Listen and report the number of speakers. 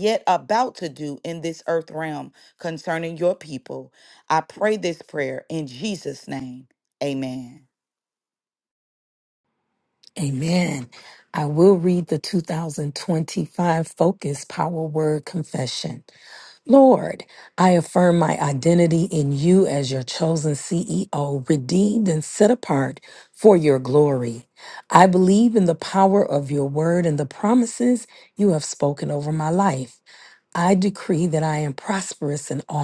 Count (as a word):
two